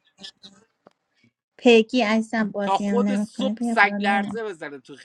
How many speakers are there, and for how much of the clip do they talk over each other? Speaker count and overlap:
two, about 34%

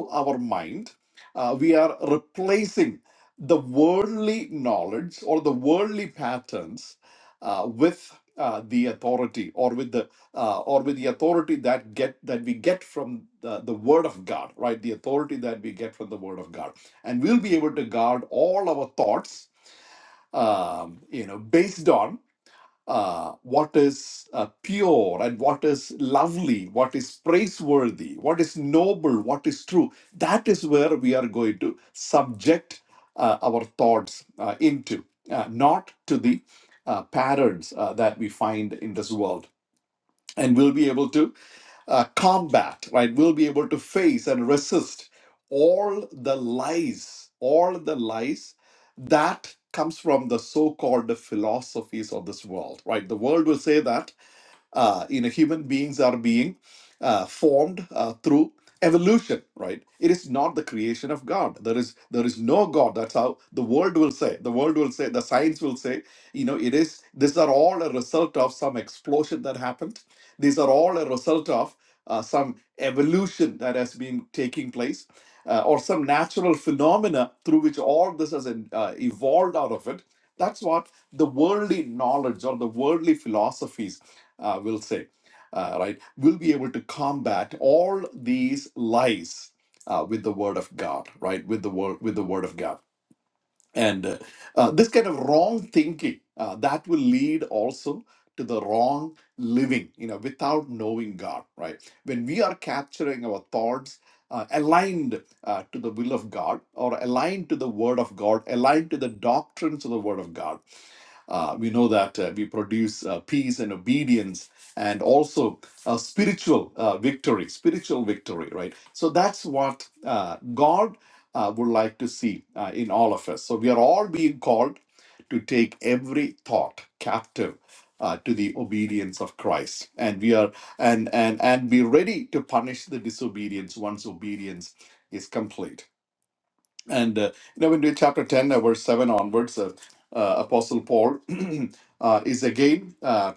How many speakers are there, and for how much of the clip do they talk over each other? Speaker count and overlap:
one, no overlap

